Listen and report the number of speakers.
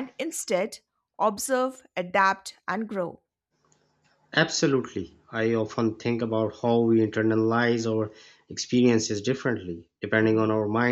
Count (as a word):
two